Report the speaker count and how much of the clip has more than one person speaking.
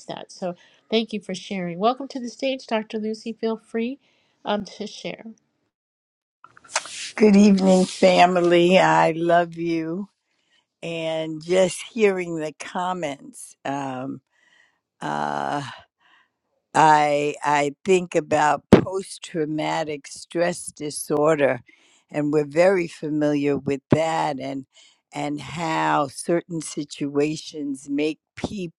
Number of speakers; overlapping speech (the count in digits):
2, no overlap